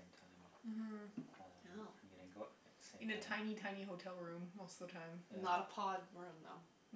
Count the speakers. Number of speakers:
3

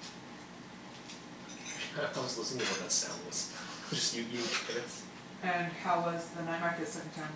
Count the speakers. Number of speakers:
2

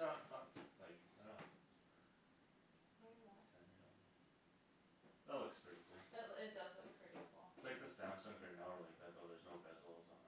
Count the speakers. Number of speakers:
2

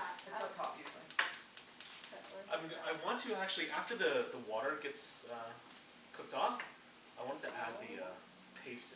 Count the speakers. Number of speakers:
3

